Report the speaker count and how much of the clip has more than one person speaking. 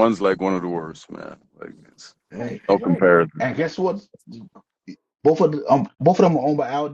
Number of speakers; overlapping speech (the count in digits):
2, no overlap